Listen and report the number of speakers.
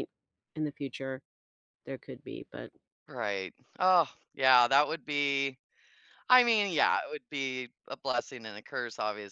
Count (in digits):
2